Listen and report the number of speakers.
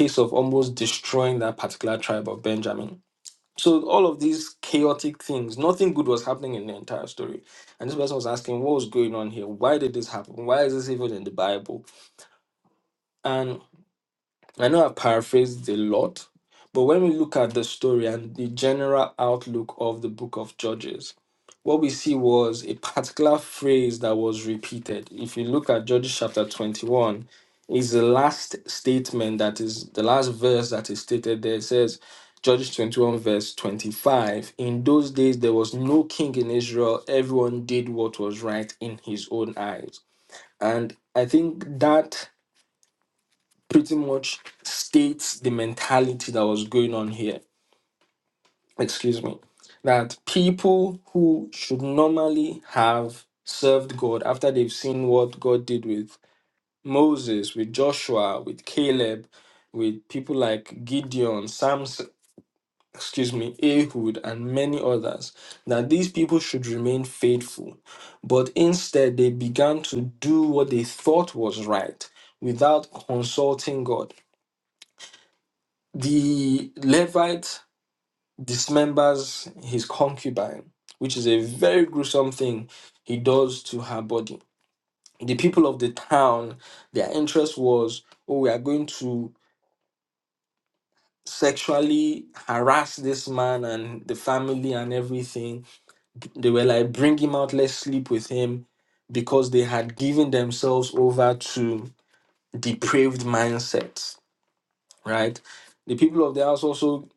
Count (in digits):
1